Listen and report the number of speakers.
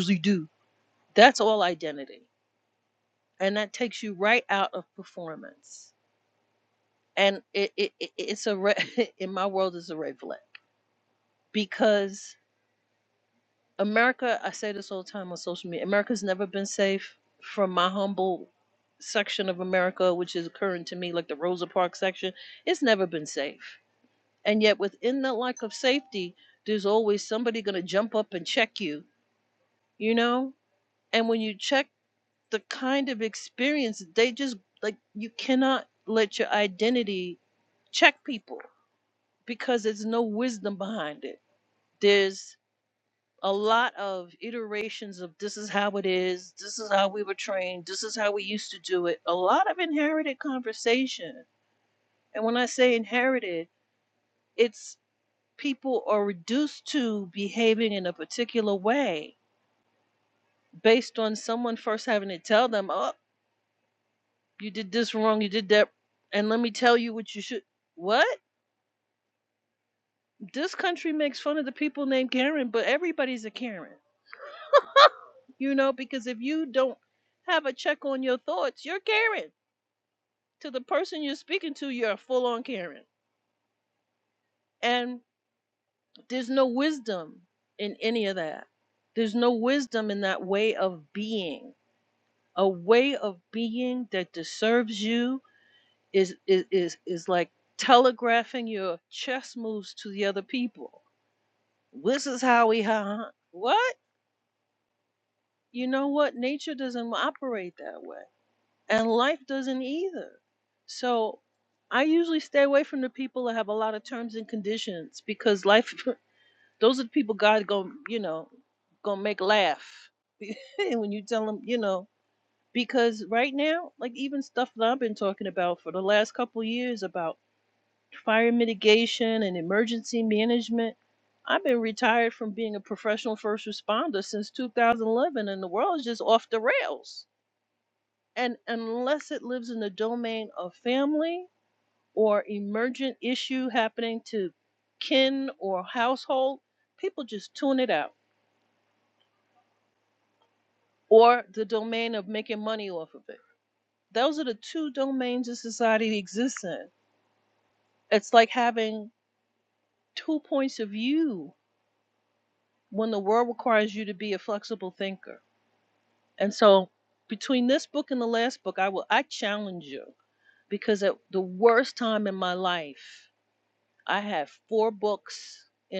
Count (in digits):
1